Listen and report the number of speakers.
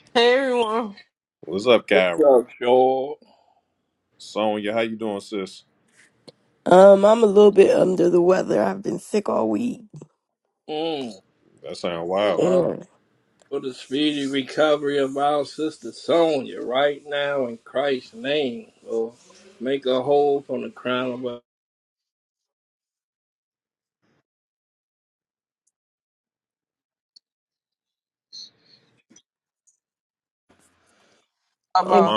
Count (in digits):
4